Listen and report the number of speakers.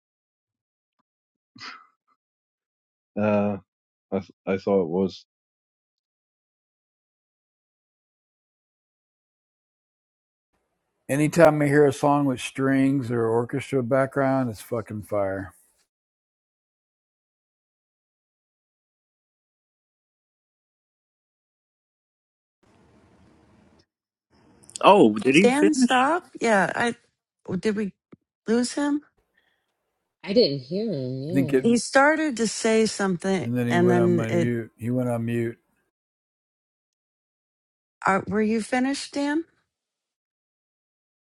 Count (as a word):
five